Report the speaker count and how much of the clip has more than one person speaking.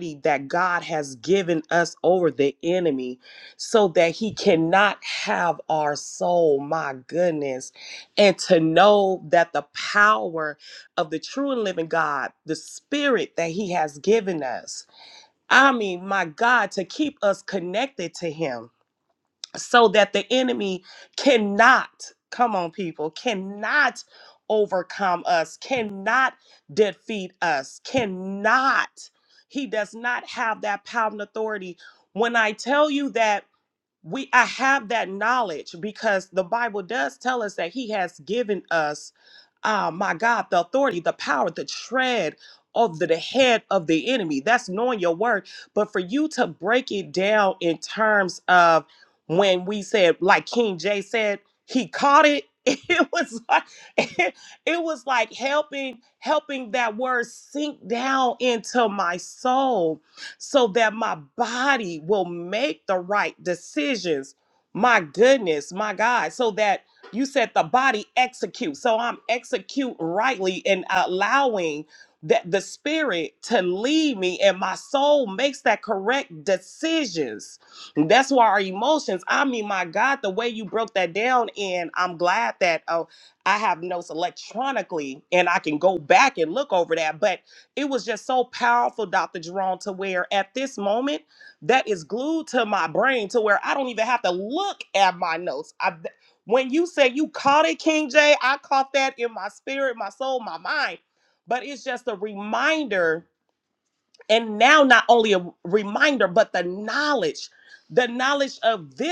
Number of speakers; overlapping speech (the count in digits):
1, no overlap